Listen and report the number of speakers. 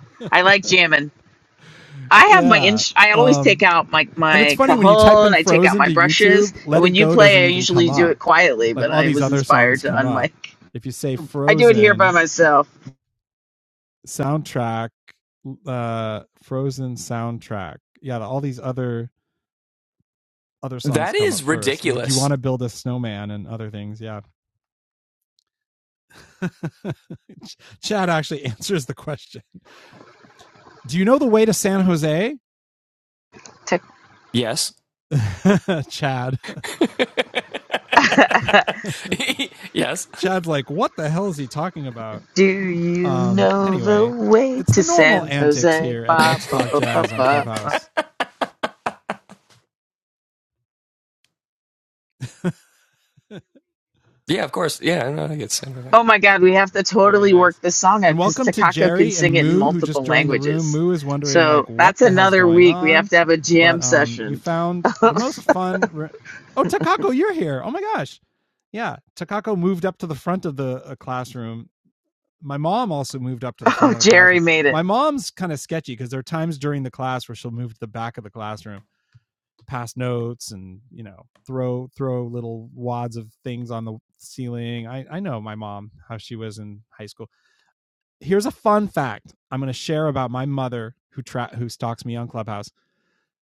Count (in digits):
3